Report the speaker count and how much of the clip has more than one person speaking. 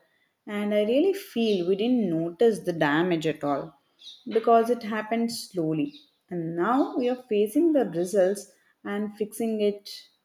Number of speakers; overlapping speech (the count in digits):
1, no overlap